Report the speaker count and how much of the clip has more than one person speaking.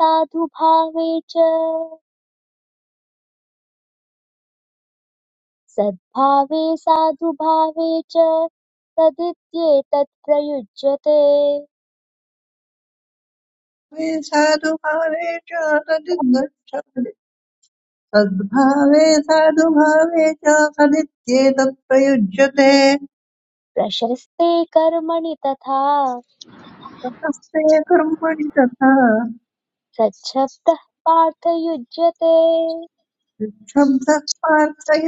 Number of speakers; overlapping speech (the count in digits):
2, no overlap